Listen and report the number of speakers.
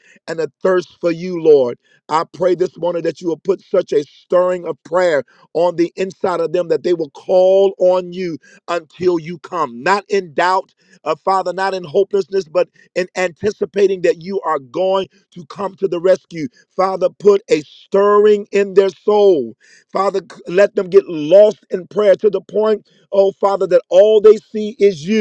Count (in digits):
1